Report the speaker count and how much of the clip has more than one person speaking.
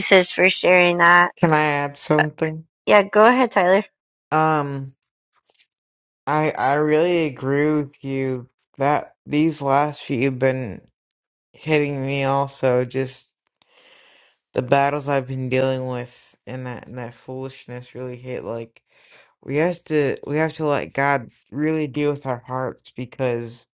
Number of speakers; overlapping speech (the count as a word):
two, no overlap